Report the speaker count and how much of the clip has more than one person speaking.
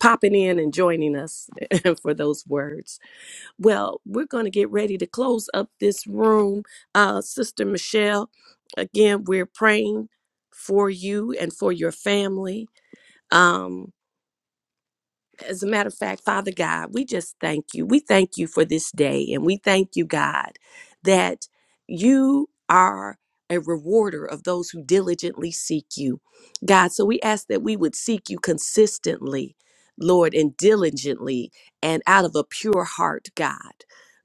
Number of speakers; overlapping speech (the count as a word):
one, no overlap